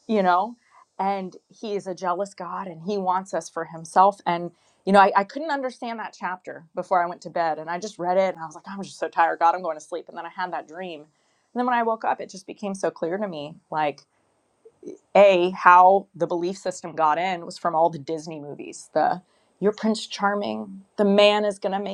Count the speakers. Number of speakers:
one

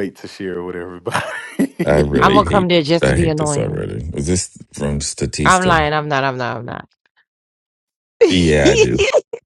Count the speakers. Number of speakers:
three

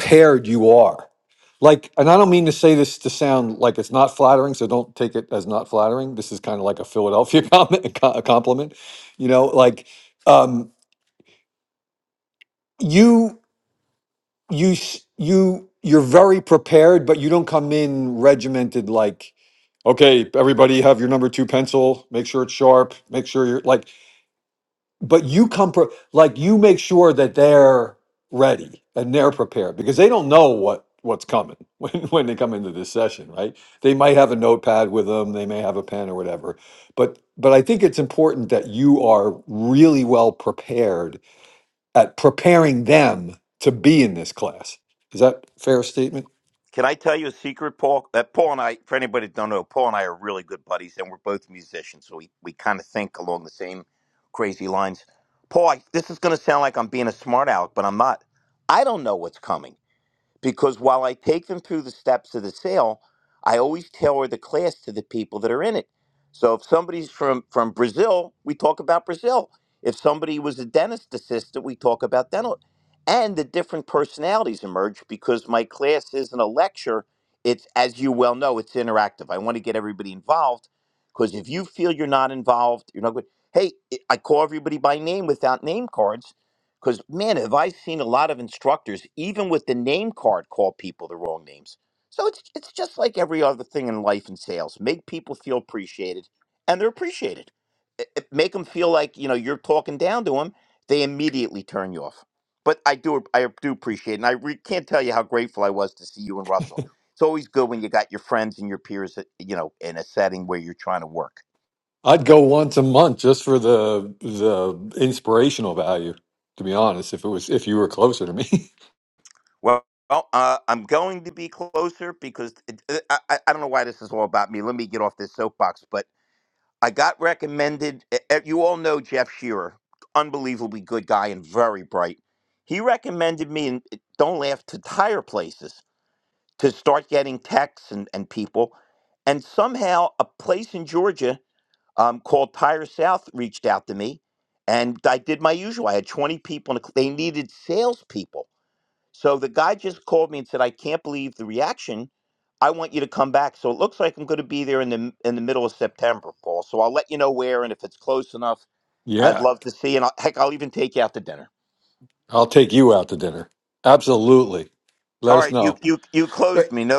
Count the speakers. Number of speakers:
two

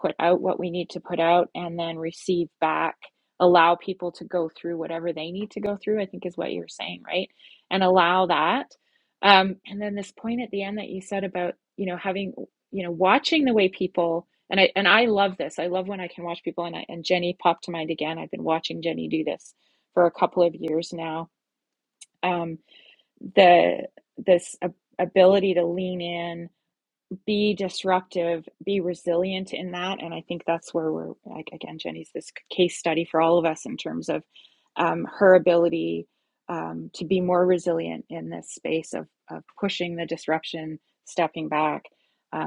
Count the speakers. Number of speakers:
one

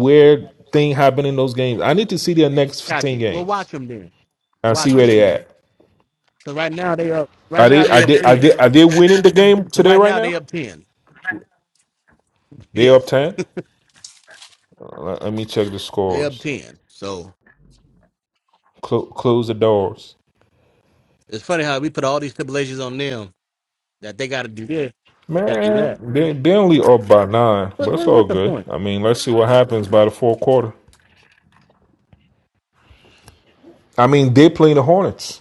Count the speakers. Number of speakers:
two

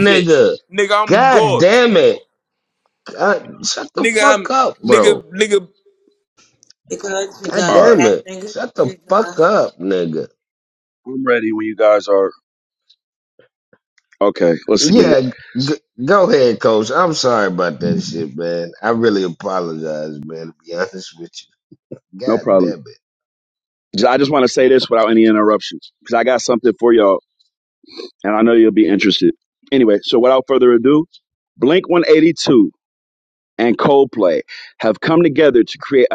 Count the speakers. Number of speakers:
four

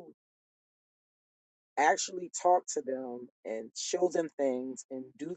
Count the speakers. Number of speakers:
one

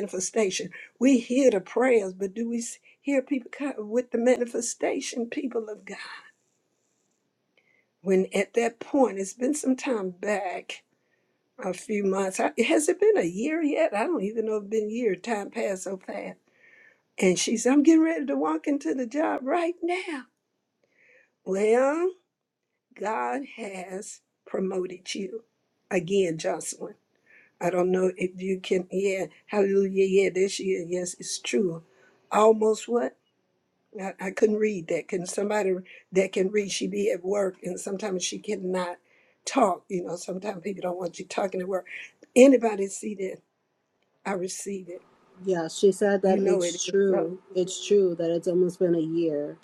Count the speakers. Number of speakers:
two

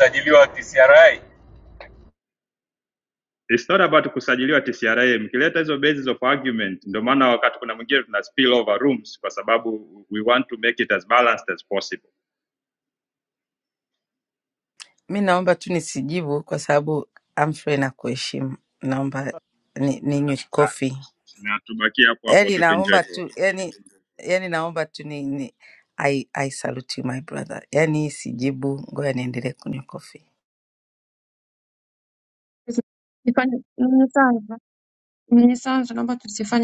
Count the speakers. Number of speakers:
four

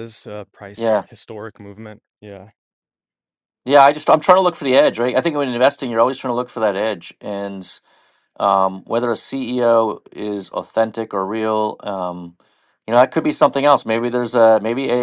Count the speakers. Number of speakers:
two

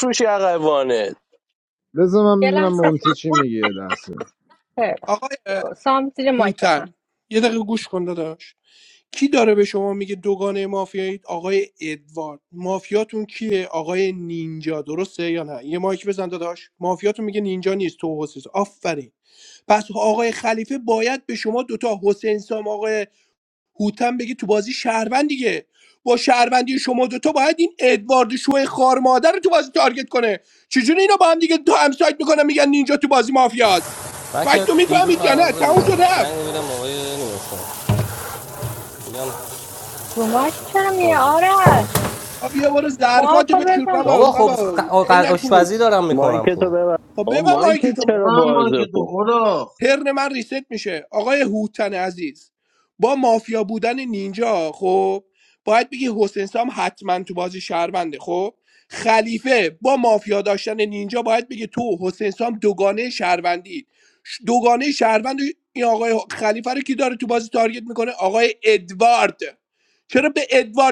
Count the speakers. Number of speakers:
six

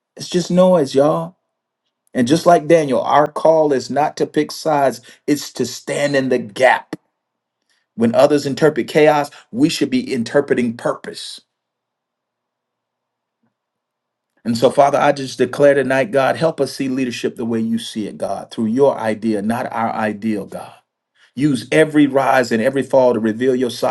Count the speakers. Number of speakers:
one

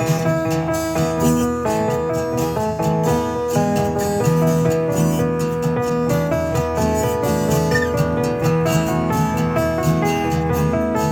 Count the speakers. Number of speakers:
zero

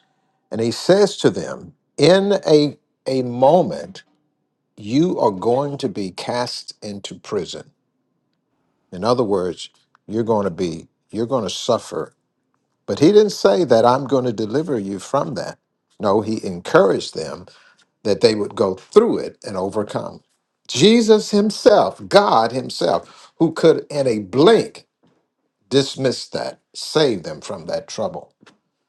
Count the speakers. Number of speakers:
one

